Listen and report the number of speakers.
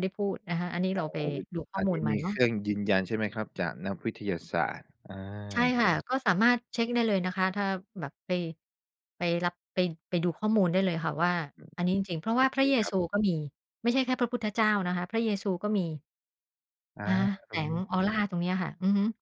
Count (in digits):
2